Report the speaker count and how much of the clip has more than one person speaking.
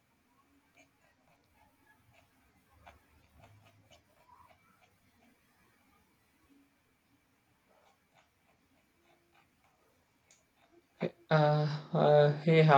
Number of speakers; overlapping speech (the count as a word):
one, no overlap